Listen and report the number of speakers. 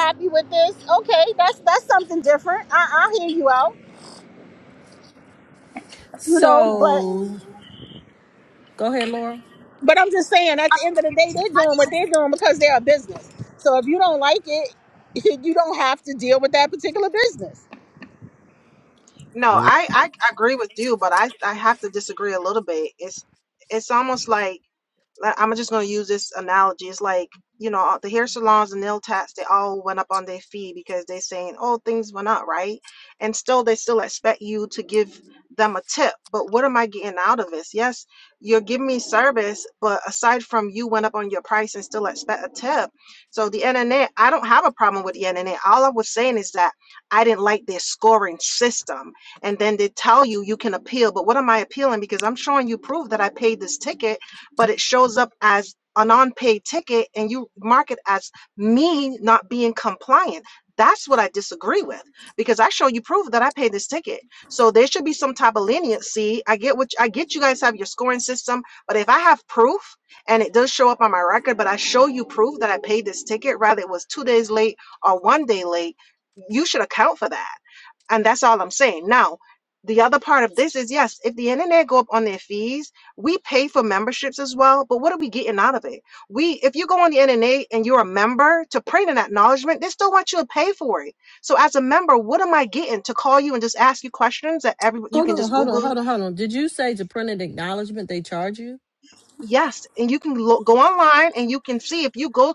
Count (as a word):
three